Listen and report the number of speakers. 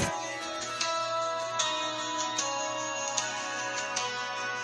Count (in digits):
0